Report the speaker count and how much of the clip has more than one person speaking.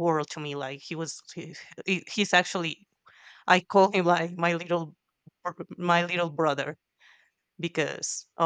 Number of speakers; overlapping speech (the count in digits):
1, no overlap